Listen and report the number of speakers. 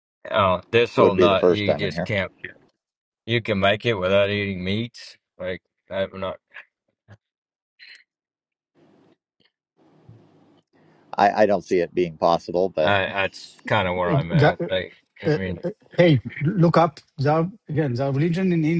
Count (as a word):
three